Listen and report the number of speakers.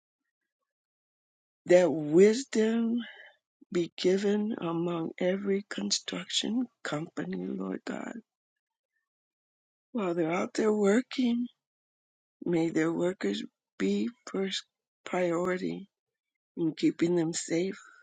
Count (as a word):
one